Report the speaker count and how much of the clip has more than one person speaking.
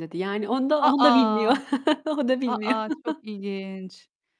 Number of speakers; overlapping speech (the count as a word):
two, about 26%